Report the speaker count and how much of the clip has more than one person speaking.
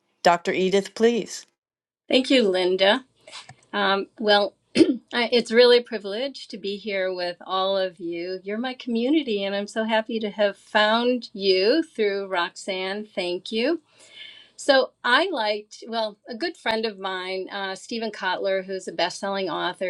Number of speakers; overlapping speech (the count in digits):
2, no overlap